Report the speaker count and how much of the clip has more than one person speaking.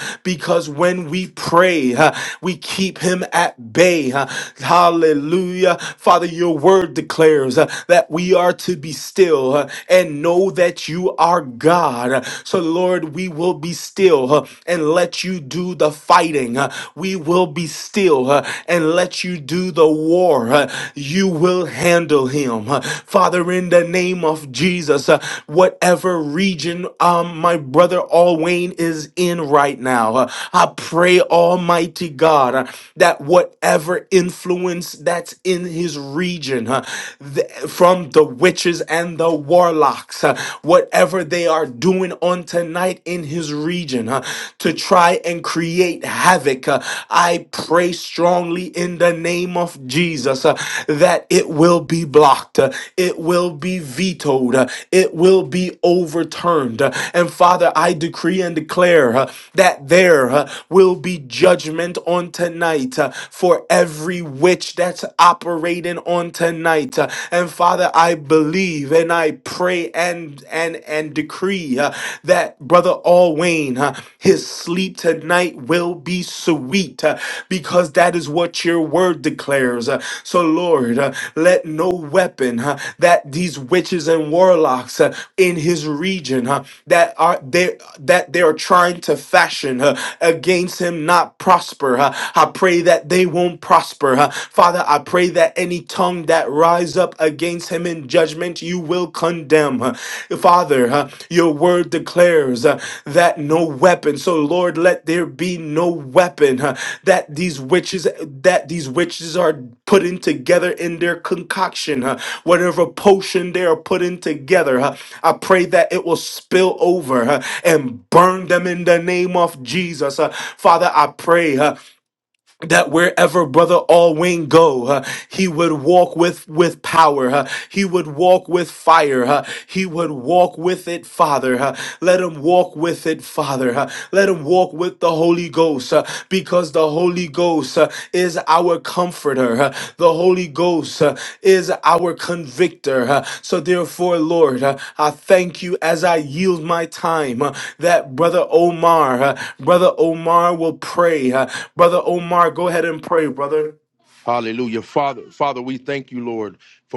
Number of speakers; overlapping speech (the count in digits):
2, no overlap